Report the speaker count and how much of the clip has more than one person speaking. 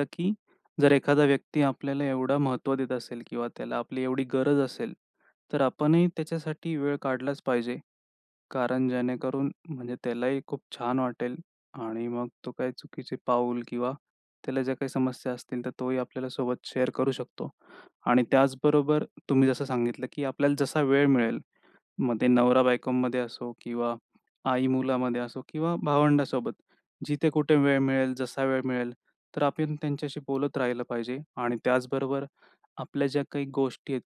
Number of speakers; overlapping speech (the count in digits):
1, no overlap